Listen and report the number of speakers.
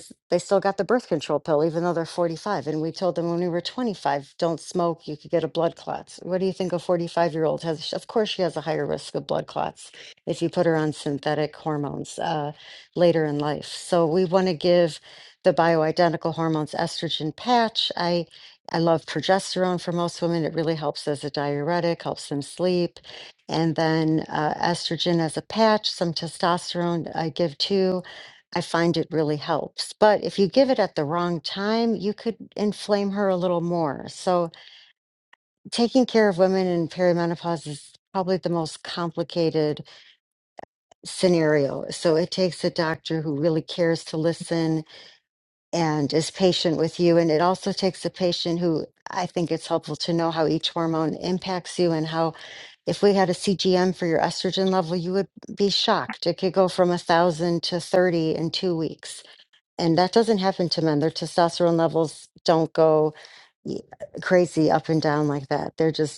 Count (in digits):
1